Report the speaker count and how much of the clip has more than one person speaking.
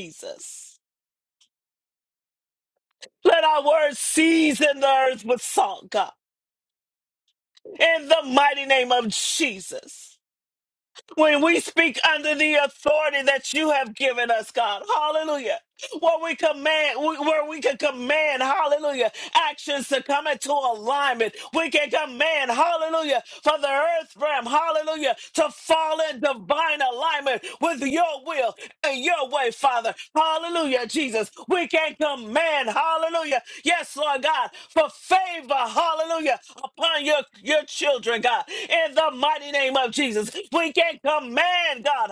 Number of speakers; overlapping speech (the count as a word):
one, no overlap